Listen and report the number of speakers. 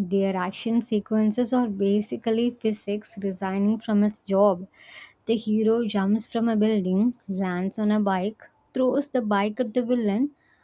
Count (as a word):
one